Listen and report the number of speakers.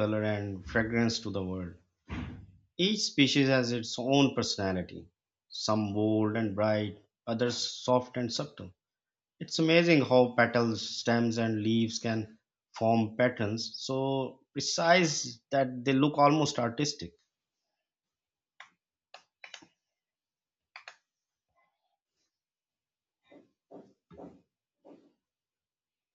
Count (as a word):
one